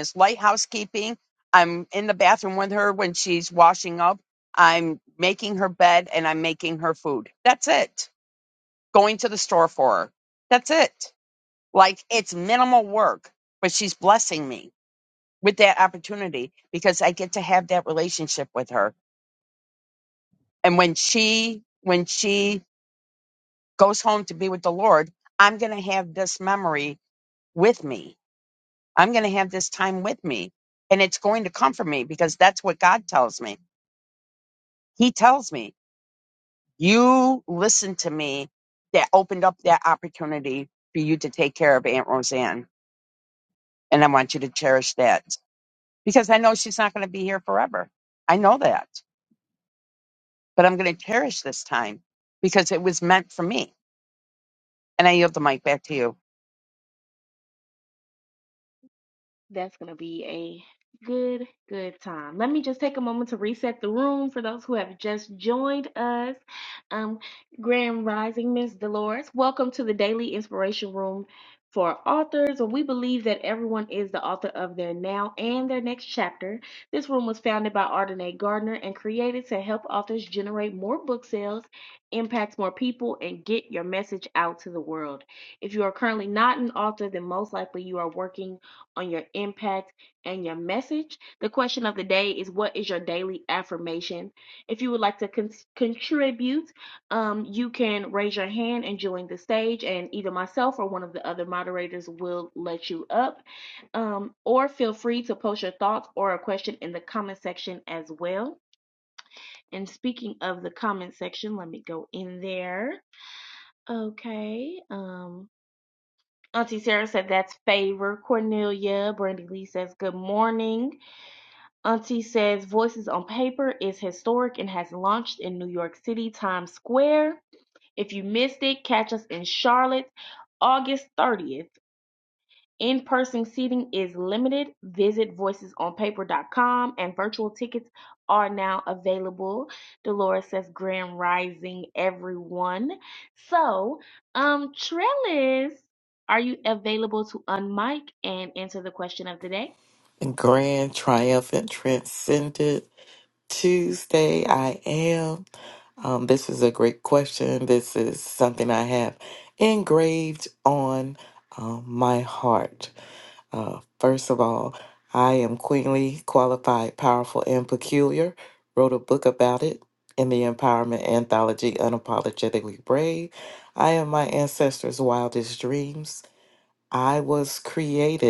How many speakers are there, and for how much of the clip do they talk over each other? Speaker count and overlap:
3, no overlap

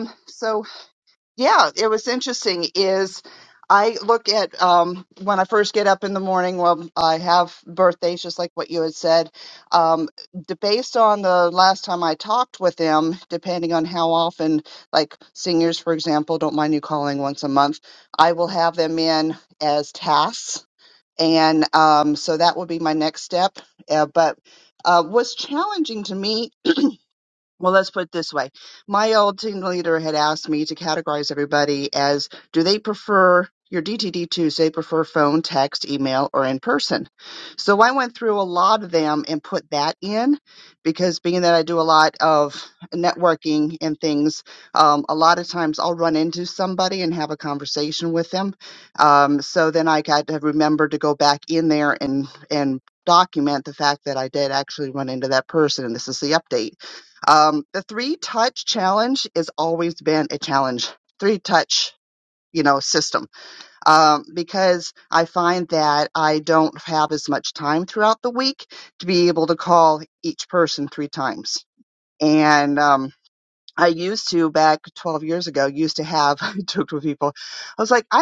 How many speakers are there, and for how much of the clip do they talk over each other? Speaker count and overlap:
1, no overlap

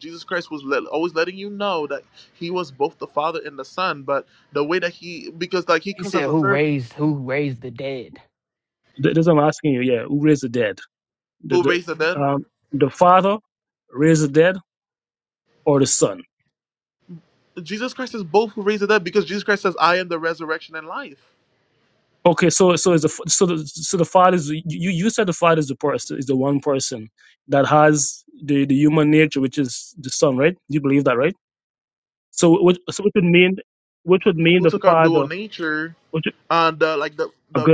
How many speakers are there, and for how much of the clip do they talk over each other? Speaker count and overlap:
3, about 5%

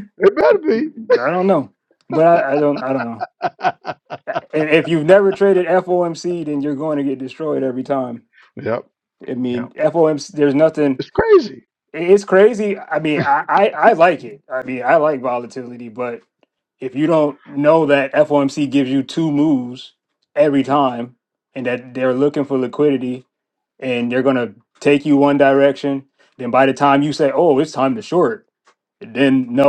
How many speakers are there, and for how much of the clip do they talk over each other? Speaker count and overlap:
2, about 1%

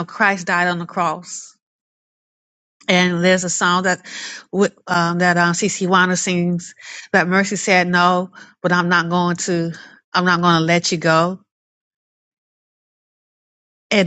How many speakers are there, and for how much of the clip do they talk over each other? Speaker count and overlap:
1, no overlap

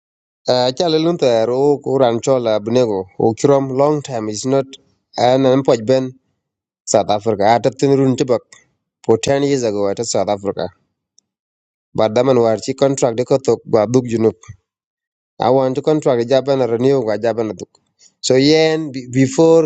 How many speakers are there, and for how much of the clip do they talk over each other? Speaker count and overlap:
1, no overlap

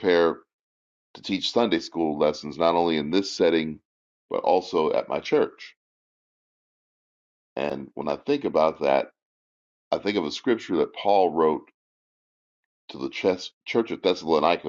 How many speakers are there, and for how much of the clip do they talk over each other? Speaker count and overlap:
1, no overlap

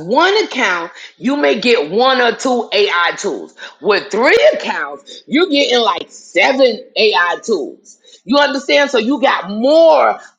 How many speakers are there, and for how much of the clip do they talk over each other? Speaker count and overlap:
1, no overlap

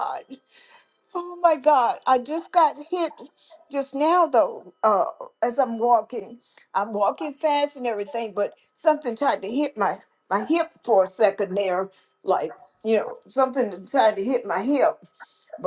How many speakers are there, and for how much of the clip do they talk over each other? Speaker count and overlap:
1, no overlap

